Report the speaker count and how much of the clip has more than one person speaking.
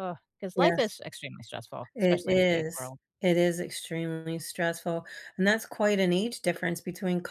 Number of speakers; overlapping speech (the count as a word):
two, about 15%